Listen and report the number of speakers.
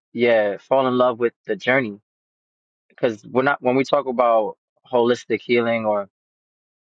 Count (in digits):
1